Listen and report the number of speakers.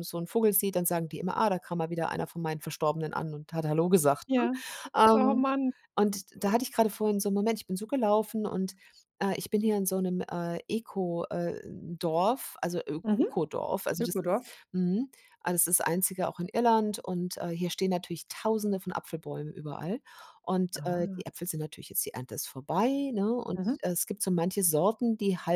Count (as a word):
two